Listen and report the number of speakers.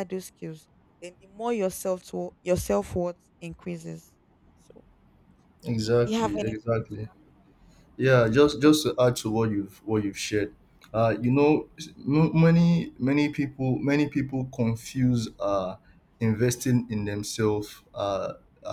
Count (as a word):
two